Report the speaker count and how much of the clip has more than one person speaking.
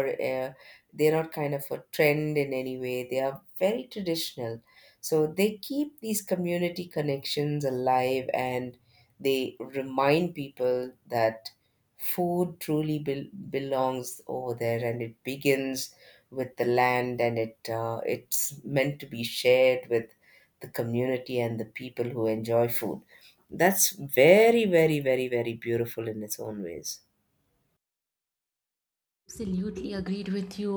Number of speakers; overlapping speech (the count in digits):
2, no overlap